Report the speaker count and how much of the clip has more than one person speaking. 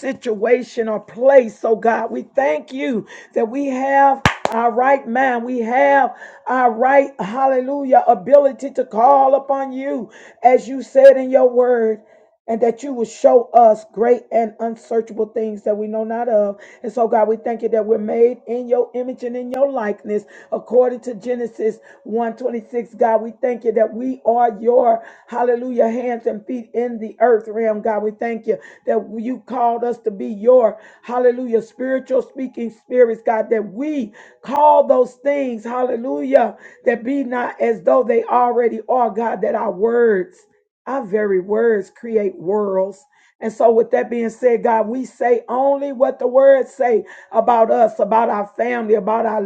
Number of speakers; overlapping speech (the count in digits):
1, no overlap